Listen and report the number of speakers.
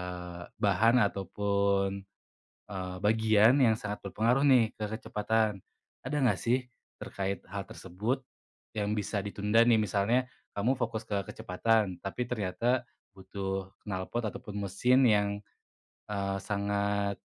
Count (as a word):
one